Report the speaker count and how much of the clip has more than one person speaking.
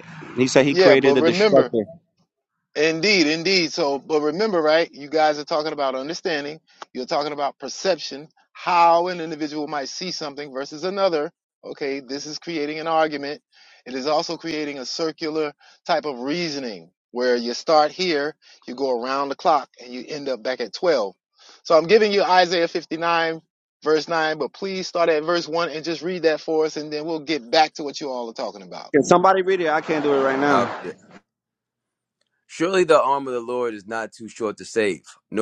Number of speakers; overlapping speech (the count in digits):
3, about 3%